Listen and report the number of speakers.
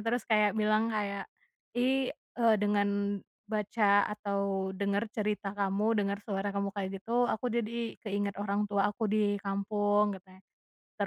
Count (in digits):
1